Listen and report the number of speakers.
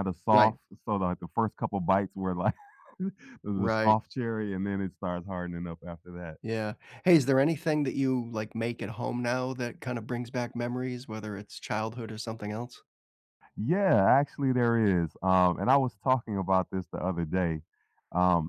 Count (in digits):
2